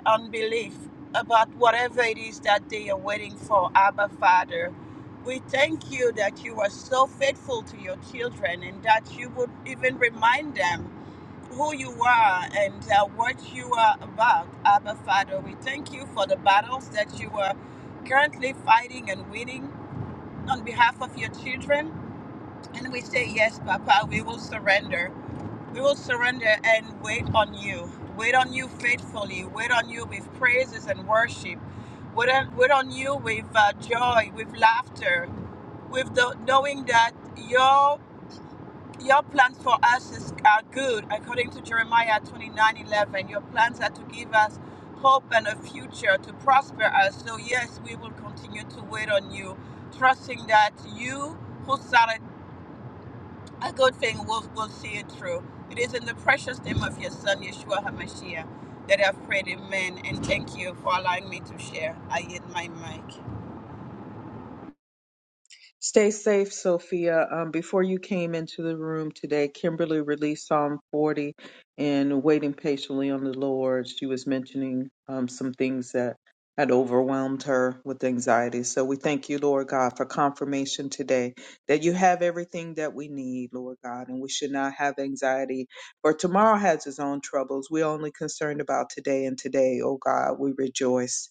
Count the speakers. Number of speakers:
2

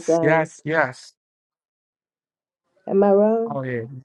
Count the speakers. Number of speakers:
2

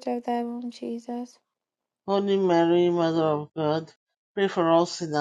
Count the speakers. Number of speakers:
2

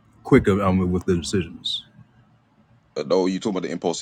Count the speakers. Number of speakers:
2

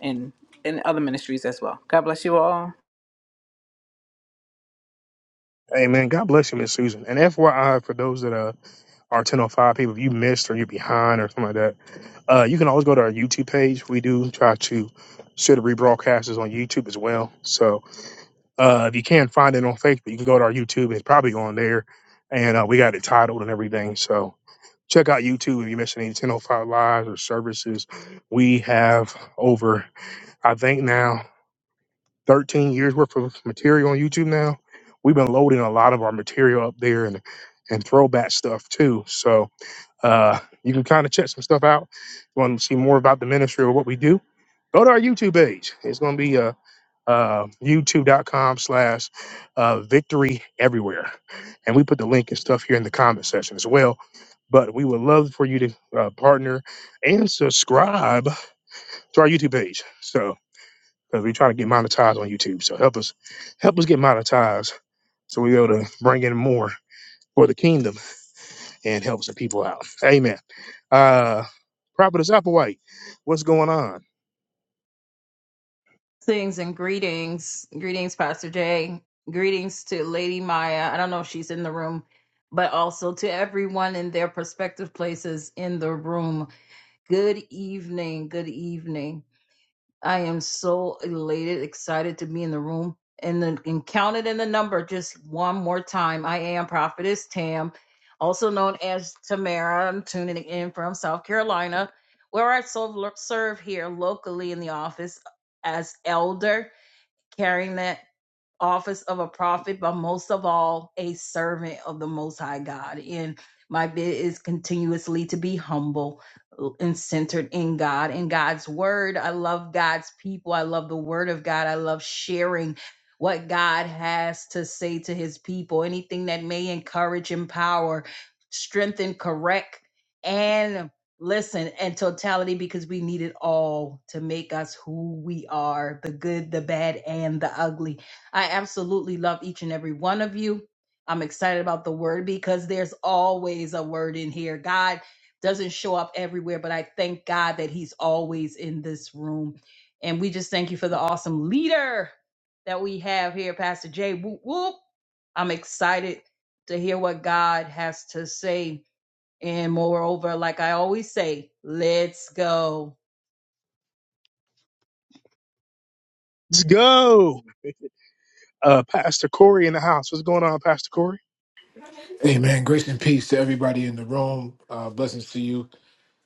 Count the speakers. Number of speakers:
4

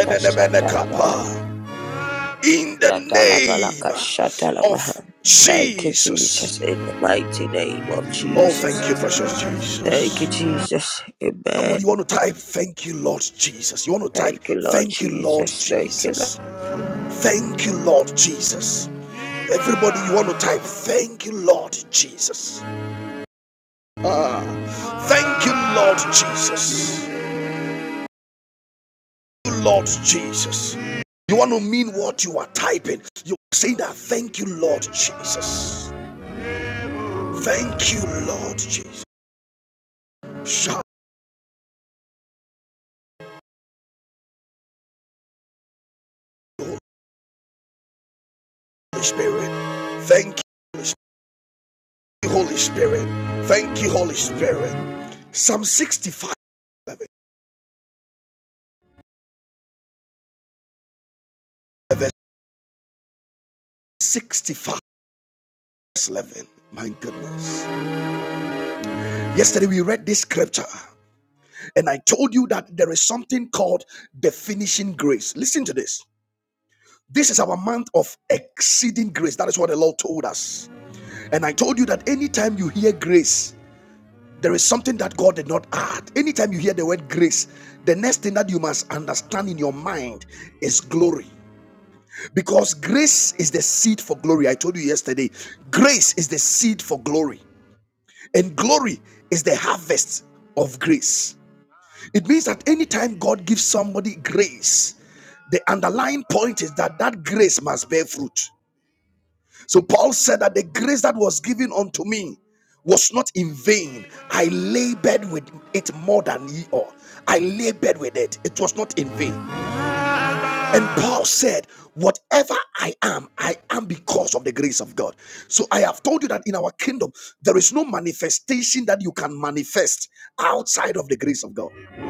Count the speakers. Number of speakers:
2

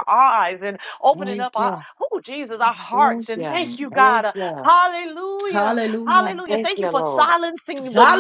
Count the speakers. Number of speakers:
3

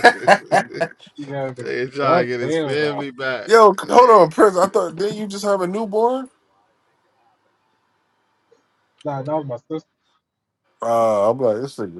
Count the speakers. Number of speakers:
3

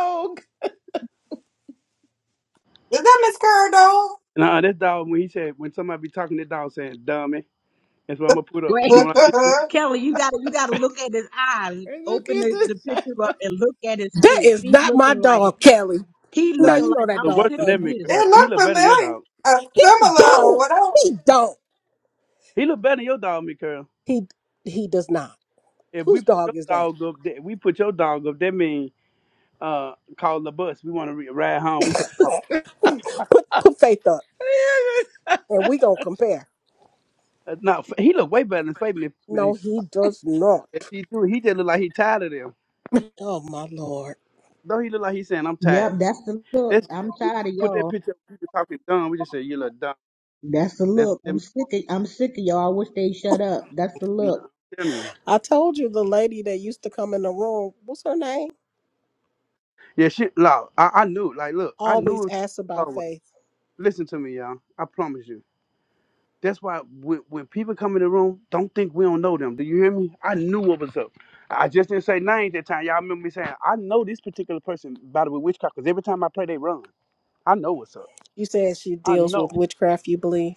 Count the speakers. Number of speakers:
5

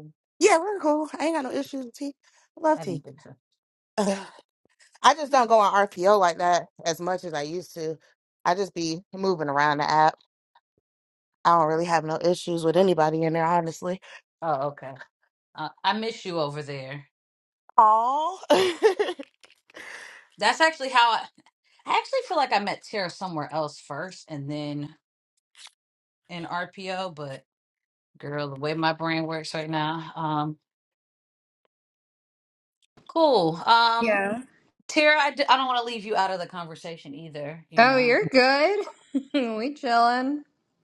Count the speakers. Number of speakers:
3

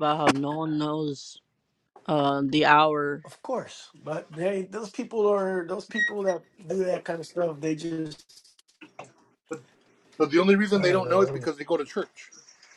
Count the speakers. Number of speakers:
3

